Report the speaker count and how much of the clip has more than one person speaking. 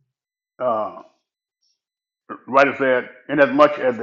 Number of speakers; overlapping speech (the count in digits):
1, no overlap